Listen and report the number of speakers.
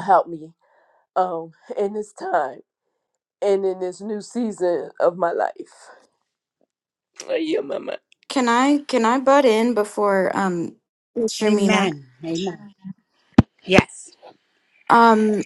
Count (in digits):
3